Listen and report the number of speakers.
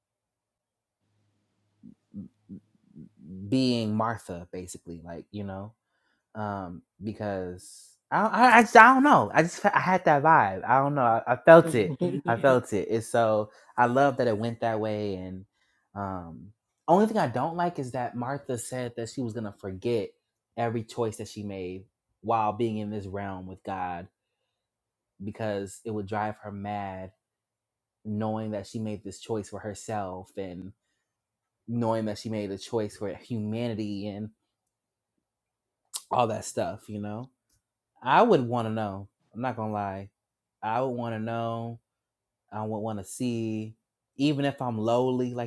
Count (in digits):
1